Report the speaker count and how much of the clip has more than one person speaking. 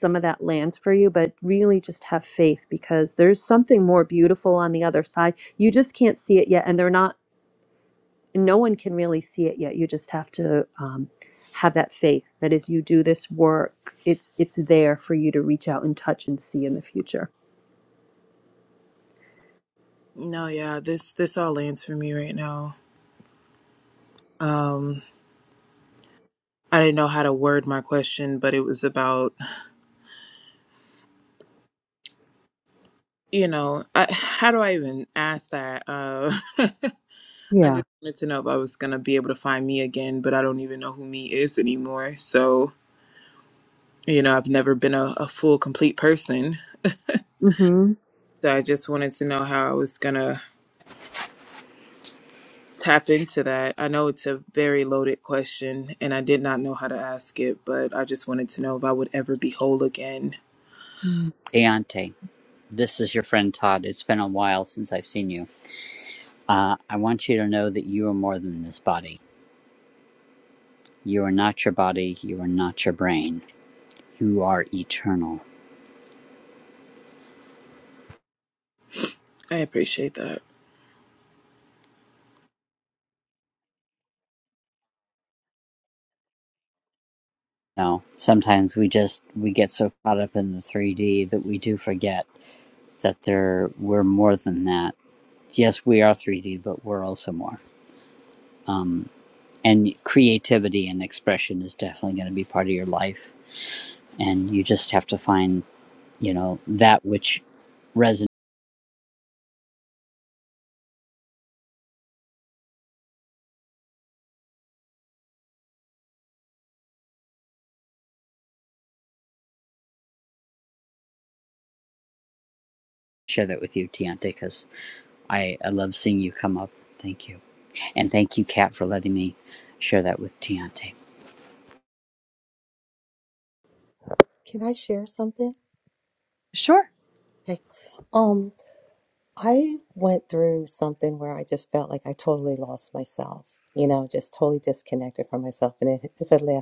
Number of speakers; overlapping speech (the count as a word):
four, under 1%